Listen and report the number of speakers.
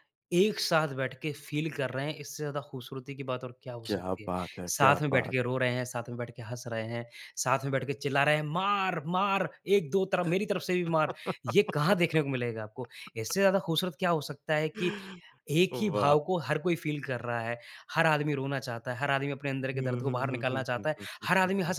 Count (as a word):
two